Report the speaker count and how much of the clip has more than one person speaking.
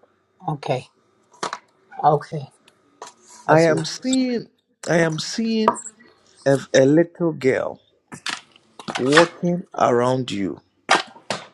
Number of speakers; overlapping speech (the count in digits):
2, about 3%